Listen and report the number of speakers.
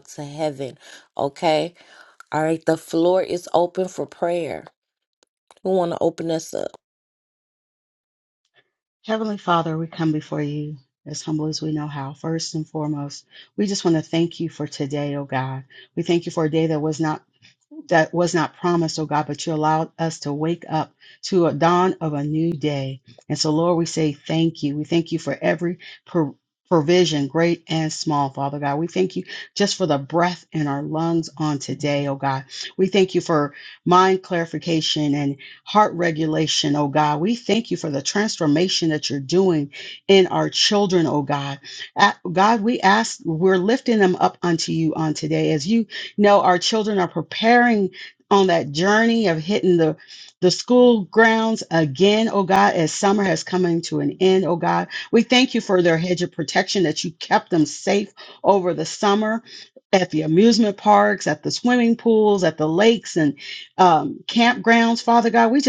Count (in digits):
2